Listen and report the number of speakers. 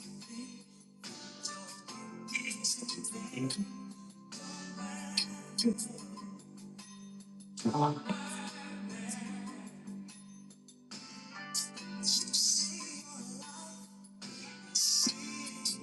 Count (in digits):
0